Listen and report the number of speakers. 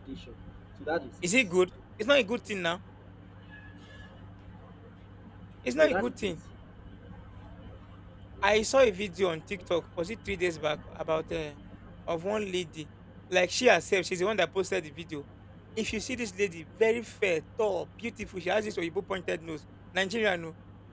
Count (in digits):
2